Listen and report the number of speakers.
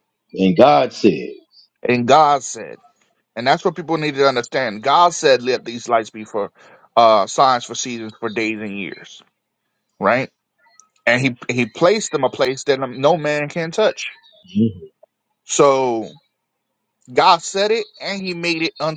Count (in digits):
2